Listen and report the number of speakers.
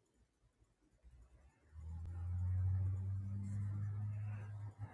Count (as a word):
zero